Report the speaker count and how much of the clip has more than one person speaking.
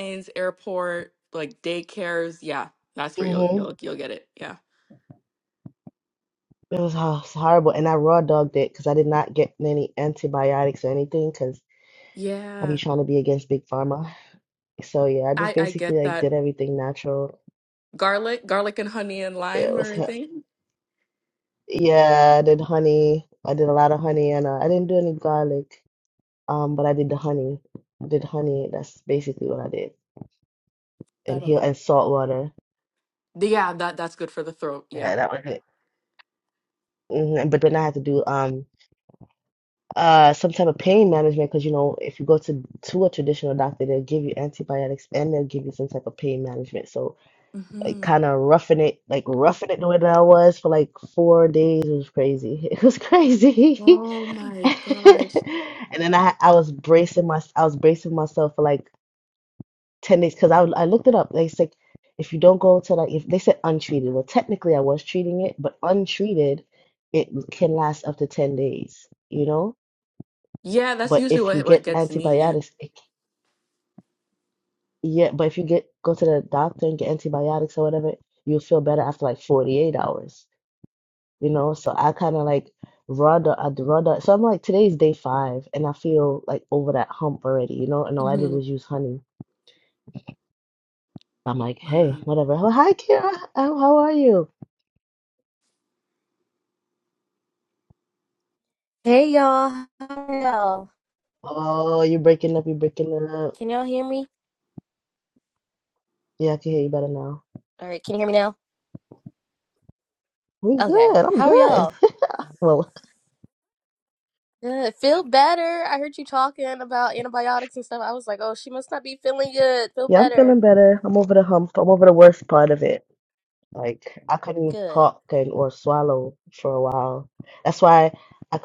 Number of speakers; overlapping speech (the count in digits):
3, about 6%